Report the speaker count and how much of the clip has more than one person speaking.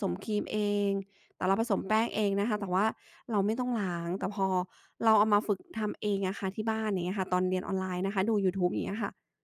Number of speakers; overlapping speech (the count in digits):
1, no overlap